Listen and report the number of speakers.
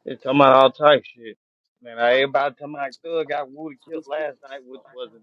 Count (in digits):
1